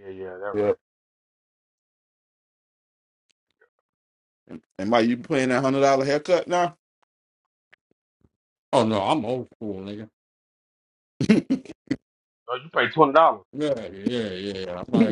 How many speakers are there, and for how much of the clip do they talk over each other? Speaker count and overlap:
3, about 1%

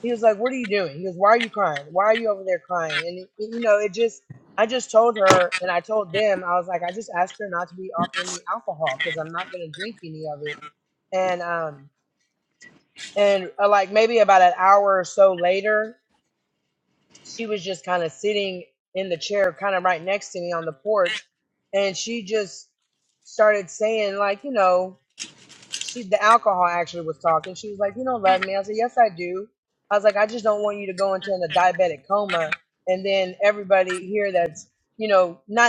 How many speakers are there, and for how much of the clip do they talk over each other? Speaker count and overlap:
1, no overlap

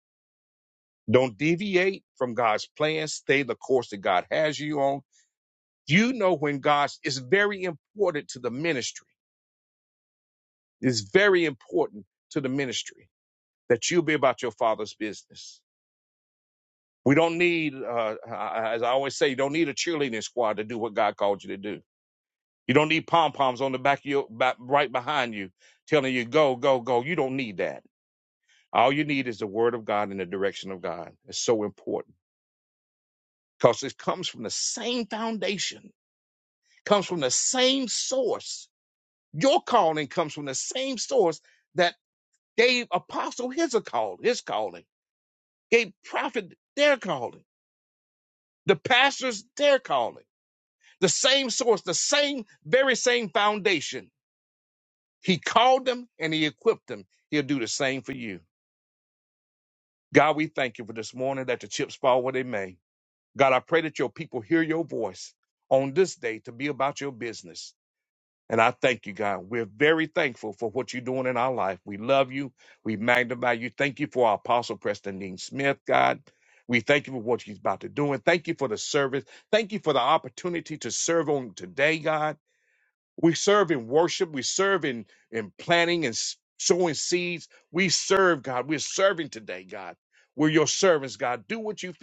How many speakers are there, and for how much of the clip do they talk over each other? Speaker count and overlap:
1, no overlap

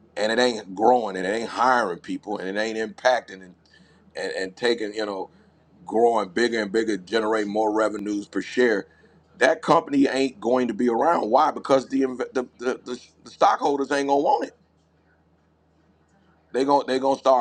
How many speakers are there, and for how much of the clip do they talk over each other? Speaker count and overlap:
1, no overlap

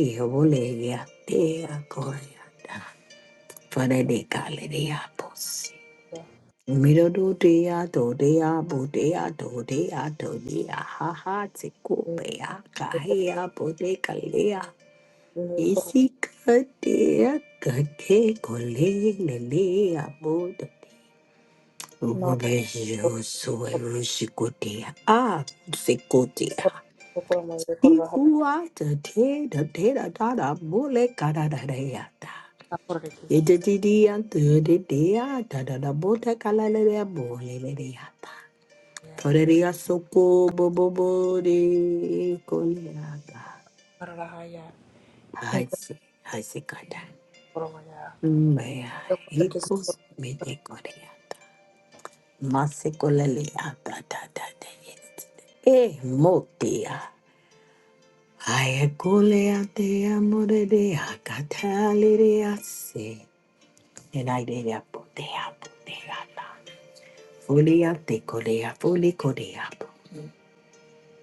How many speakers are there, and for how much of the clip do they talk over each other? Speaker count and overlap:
2, about 3%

